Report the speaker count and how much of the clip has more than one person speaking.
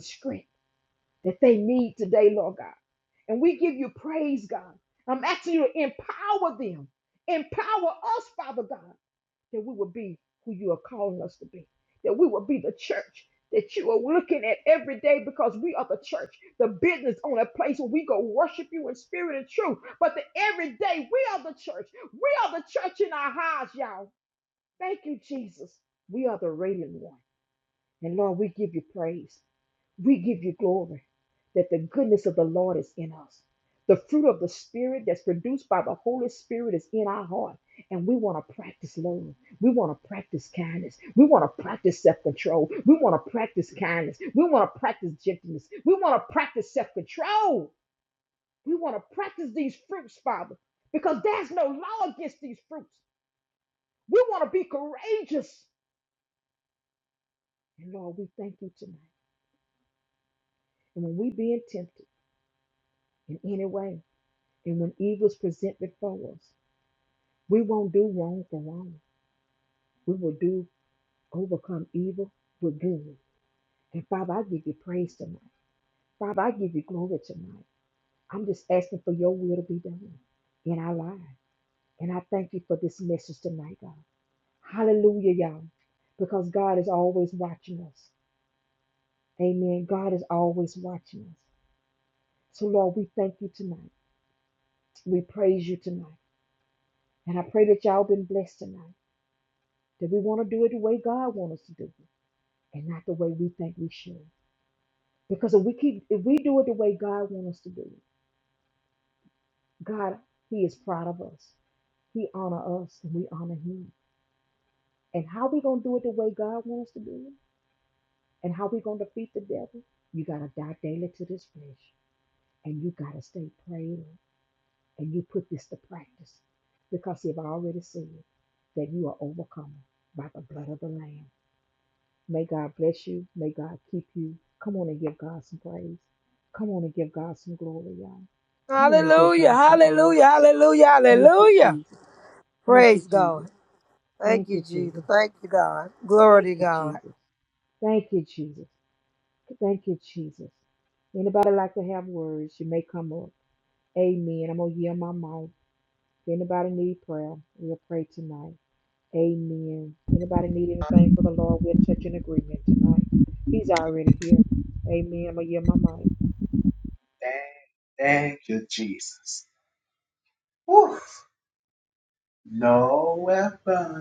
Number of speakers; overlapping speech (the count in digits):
3, about 2%